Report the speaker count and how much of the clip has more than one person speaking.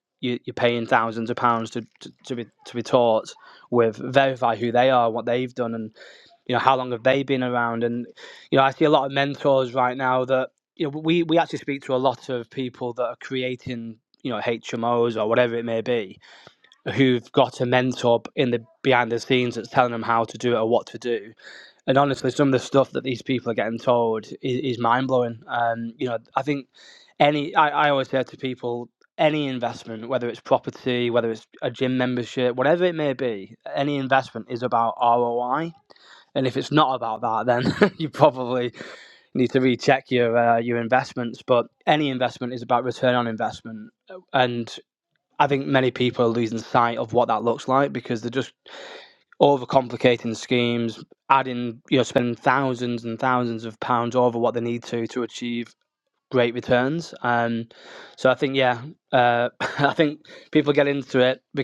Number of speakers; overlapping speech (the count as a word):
one, no overlap